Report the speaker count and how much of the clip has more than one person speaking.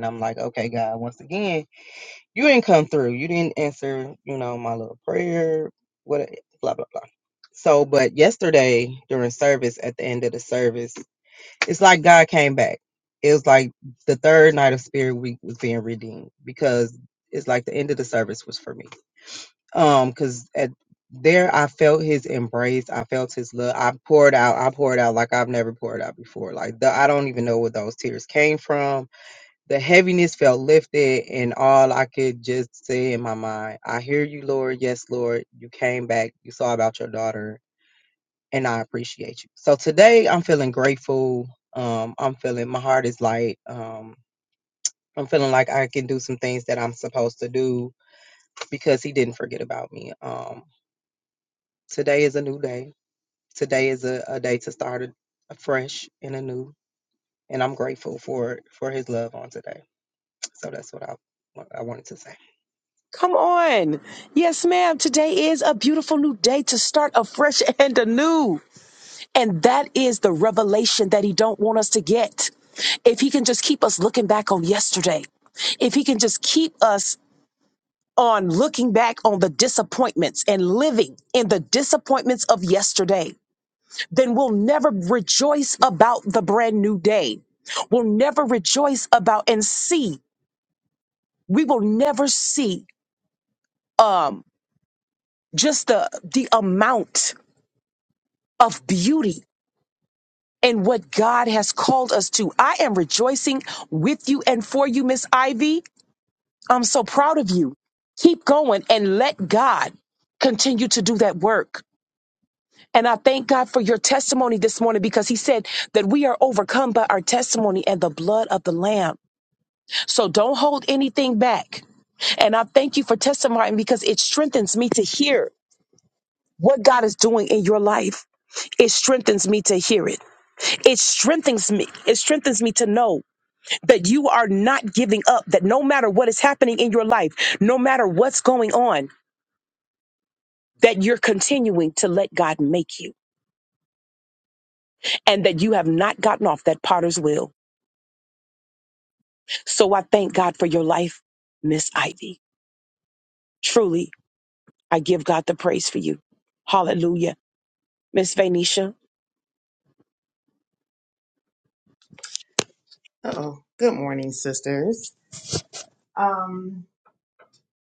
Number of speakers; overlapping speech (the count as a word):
three, no overlap